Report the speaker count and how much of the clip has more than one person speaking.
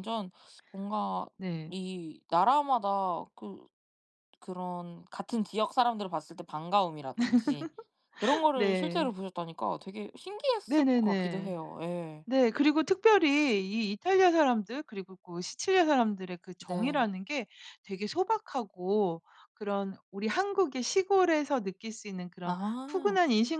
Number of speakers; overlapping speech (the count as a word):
two, about 8%